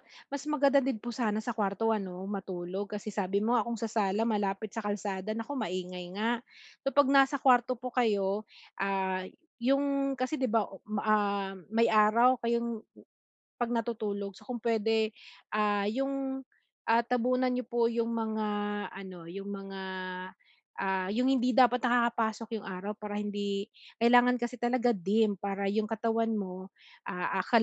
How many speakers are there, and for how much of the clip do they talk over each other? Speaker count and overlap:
one, no overlap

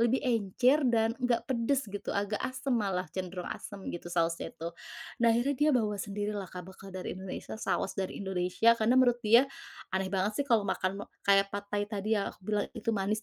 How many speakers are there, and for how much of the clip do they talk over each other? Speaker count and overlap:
one, no overlap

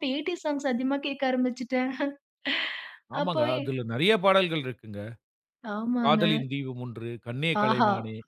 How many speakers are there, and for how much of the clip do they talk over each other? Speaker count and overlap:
two, about 16%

